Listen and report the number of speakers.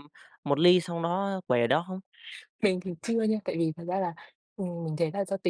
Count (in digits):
2